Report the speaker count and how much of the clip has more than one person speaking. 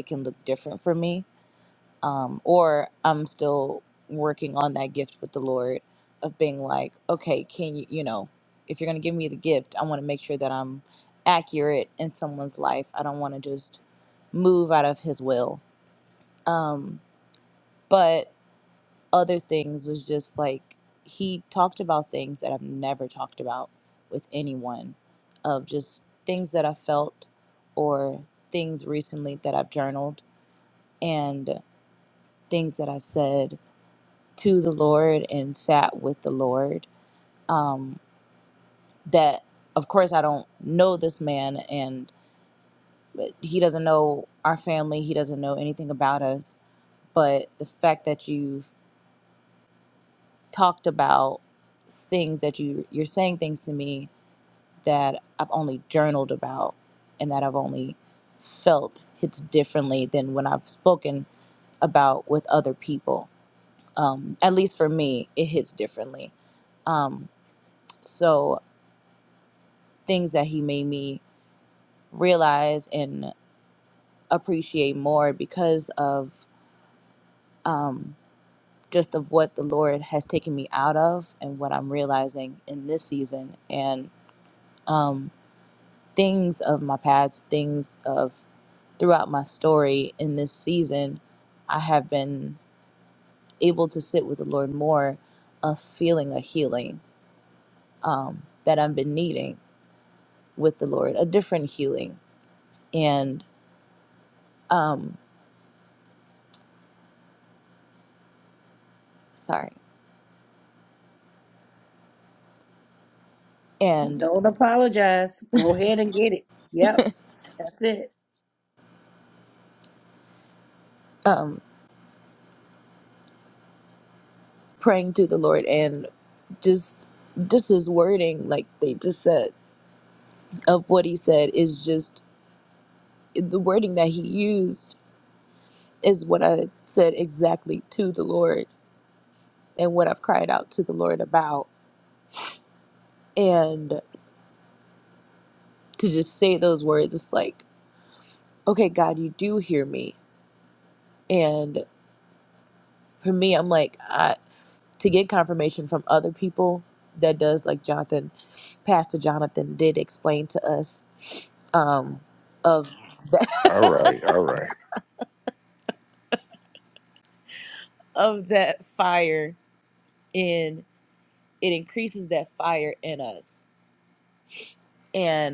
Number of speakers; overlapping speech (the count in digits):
3, under 1%